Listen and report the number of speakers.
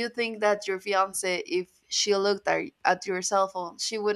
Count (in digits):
1